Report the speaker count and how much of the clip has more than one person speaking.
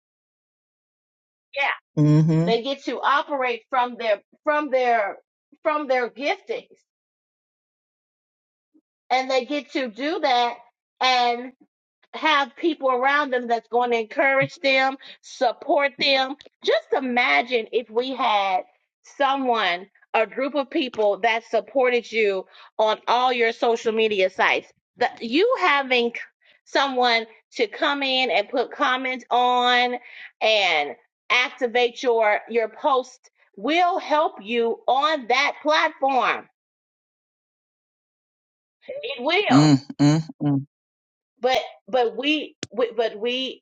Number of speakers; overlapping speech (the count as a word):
two, about 1%